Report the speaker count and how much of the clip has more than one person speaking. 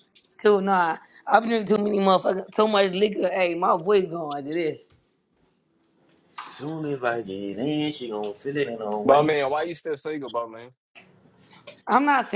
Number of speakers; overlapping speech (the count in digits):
3, about 3%